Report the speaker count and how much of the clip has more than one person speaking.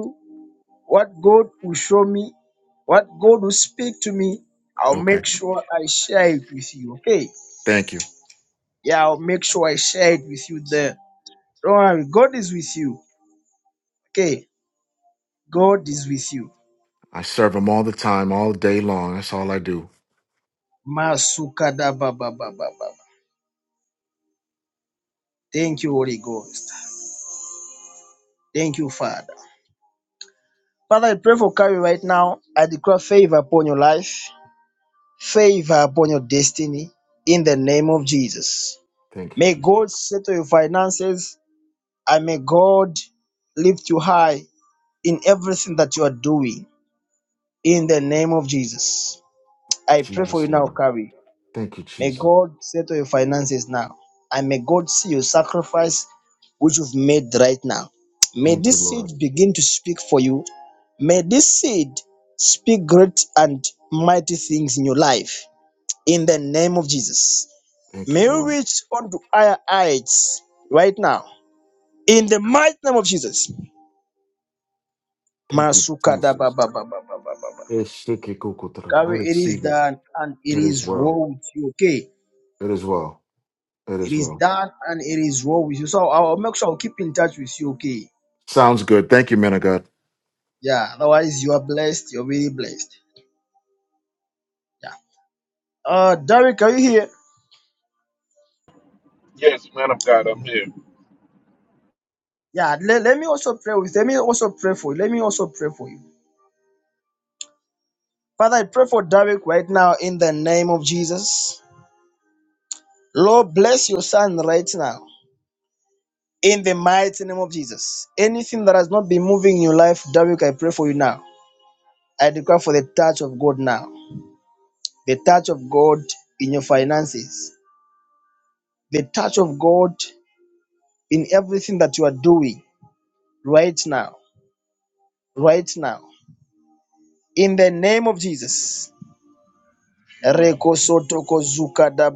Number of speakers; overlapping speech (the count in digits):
3, about 3%